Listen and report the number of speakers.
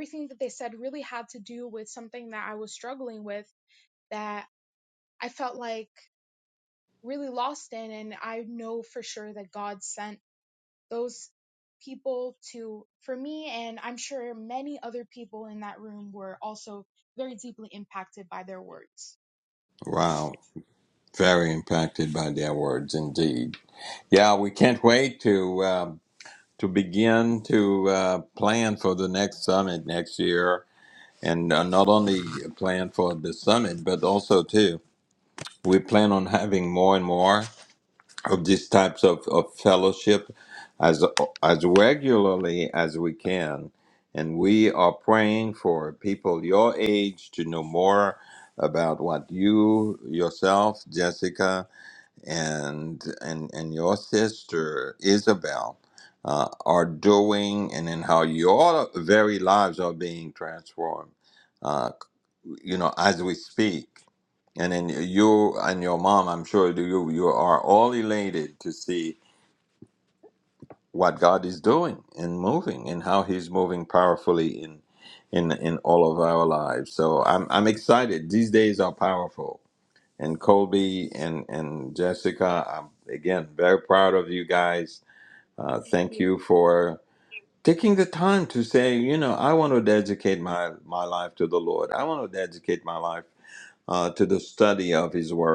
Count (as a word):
two